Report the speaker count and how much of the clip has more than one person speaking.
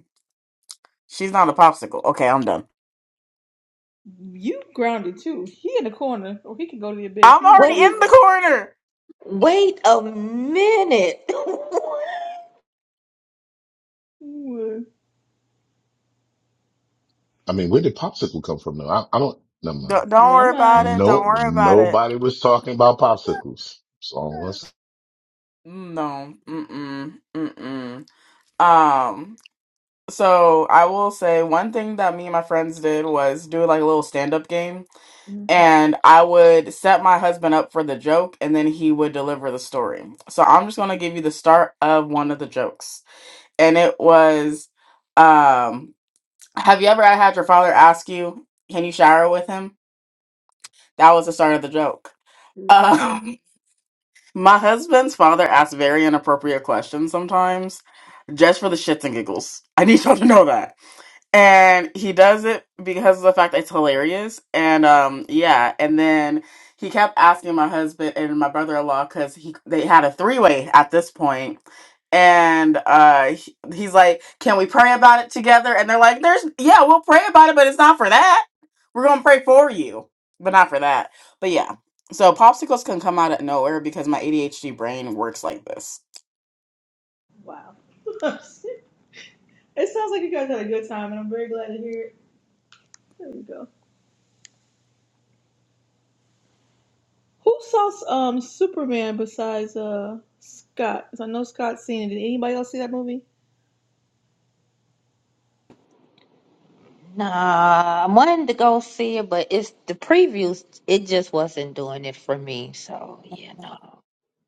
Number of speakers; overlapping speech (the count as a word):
four, about 3%